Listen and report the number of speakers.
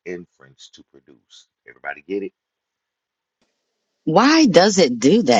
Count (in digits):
2